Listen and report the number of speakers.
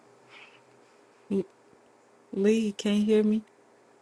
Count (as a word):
one